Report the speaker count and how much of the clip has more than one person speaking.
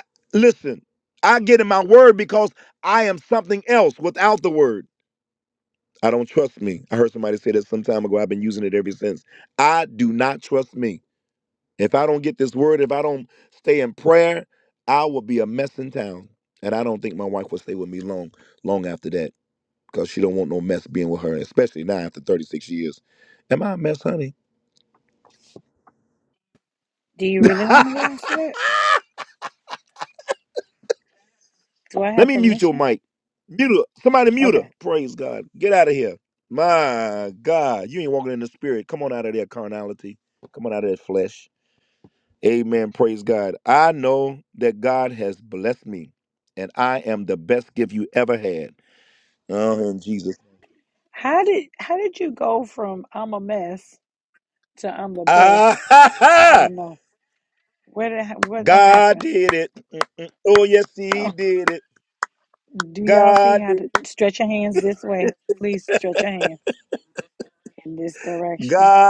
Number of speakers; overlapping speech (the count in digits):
2, about 5%